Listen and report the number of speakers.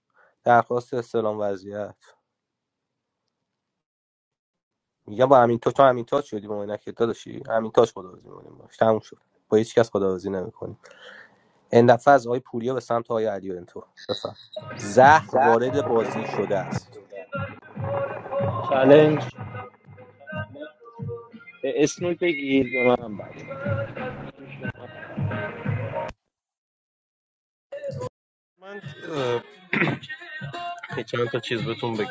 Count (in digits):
3